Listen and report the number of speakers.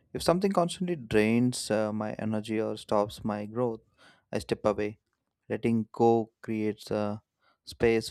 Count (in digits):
1